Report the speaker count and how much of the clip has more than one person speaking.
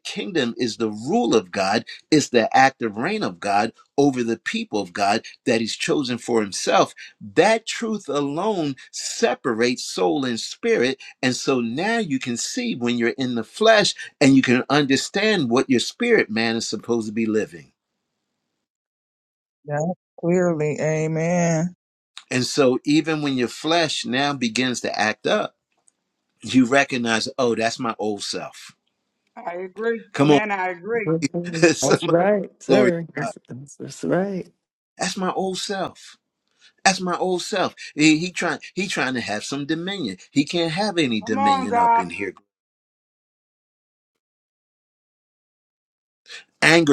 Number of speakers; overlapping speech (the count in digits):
4, about 4%